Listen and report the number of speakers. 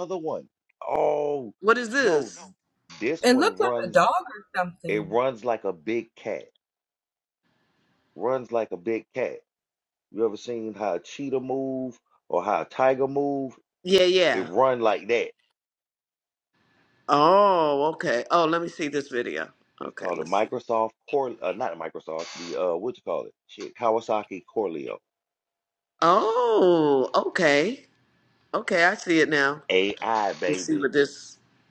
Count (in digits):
3